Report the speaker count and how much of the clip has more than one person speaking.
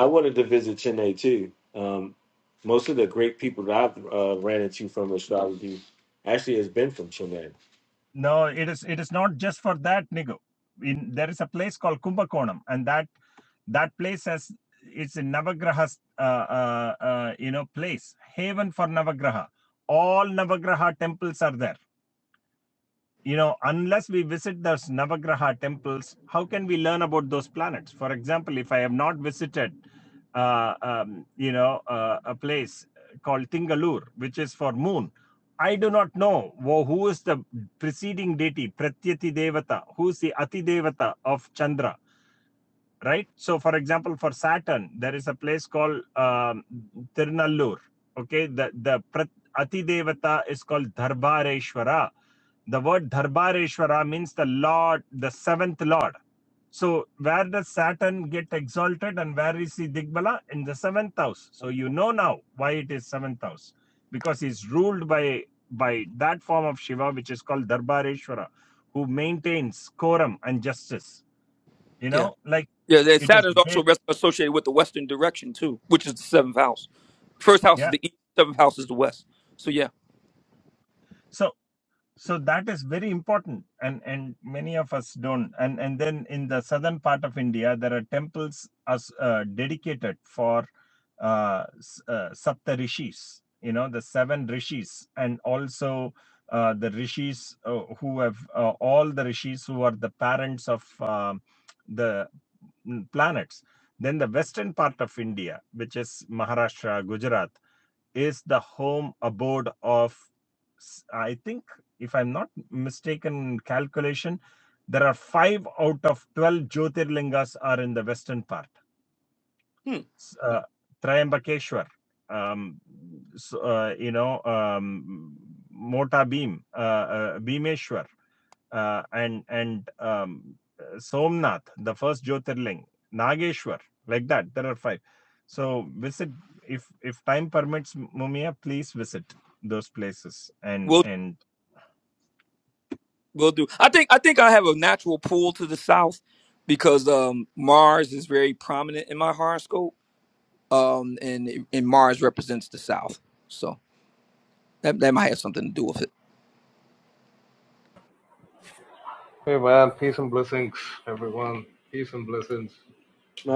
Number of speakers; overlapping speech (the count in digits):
4, about 1%